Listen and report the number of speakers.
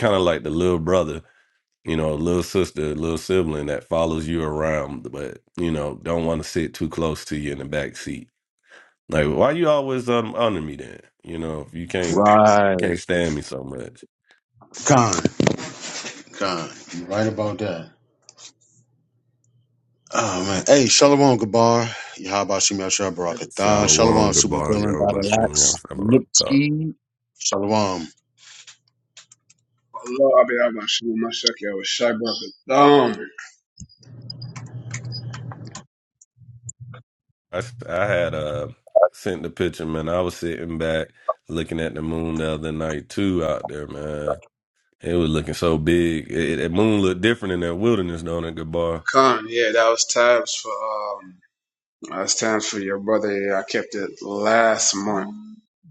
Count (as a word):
three